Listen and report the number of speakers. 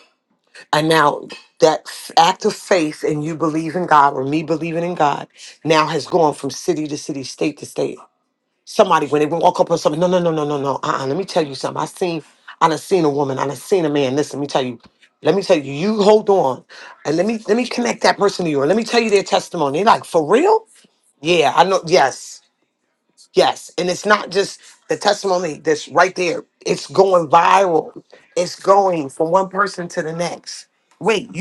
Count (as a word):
one